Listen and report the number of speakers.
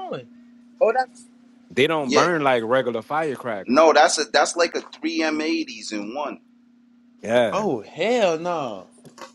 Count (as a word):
three